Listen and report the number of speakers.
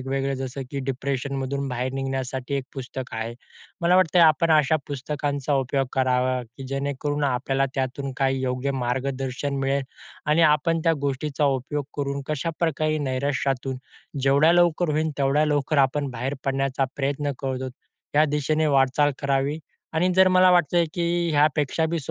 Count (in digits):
1